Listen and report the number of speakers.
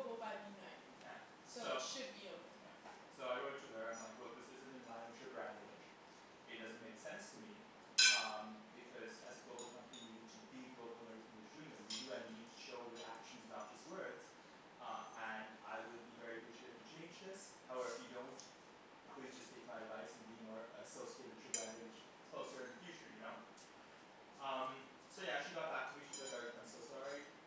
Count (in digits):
2